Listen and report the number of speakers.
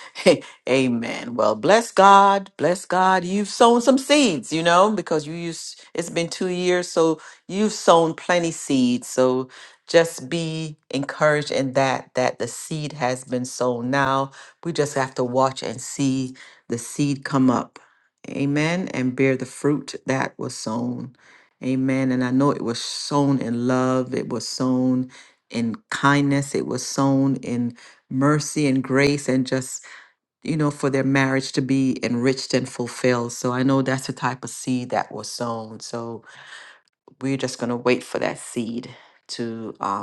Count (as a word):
one